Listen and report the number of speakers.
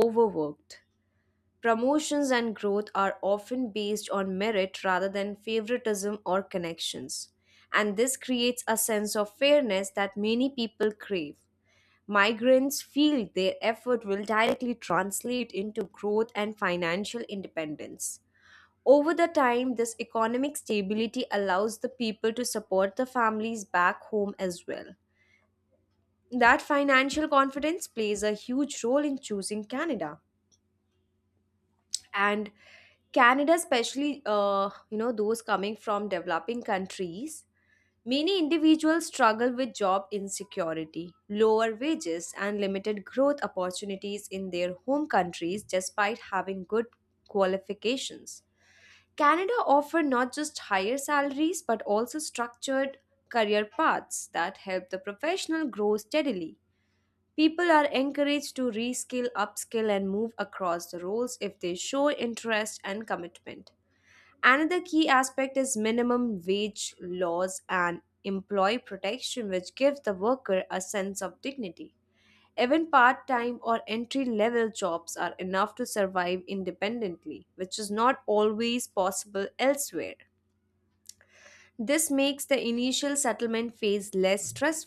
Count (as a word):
one